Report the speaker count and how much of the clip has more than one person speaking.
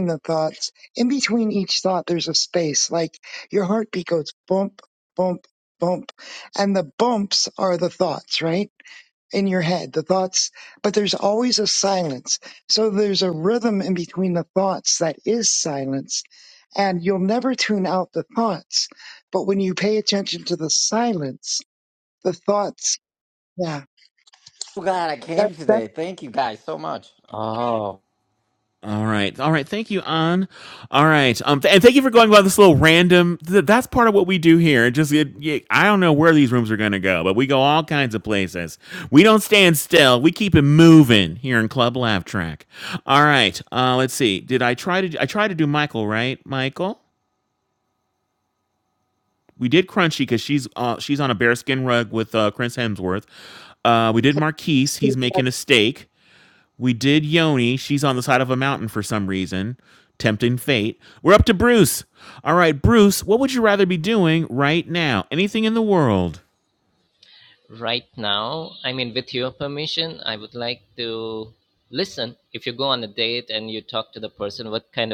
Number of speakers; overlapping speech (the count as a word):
four, about 1%